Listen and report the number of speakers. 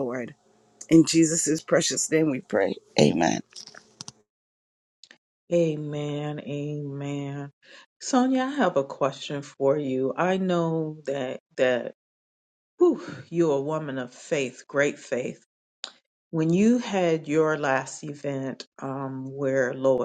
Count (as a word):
two